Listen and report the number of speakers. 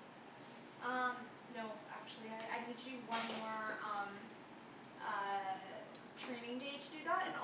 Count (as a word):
one